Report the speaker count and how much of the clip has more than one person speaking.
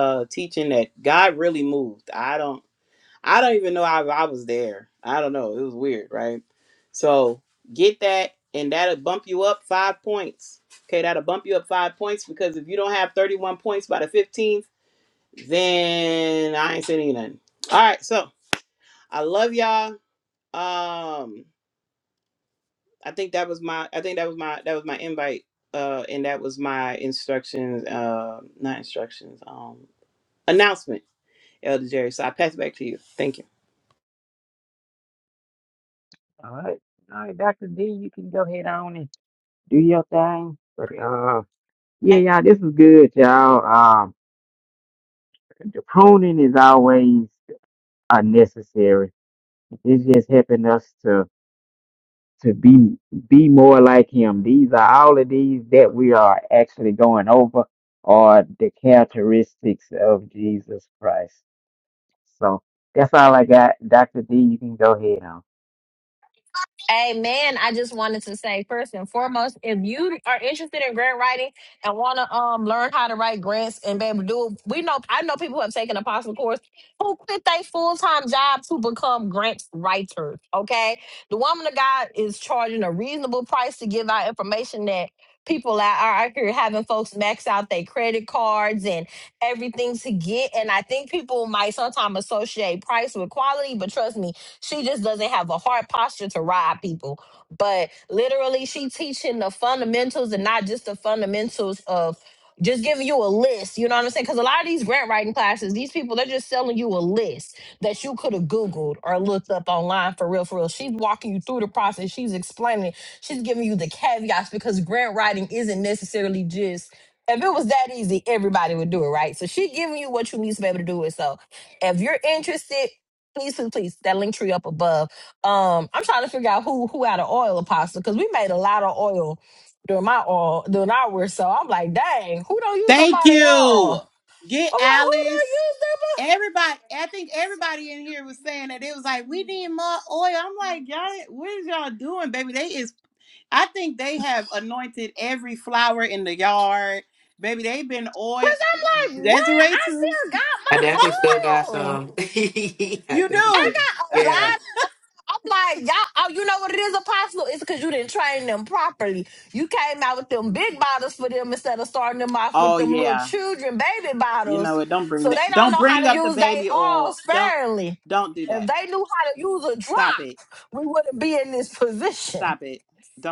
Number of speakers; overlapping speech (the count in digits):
4, about 5%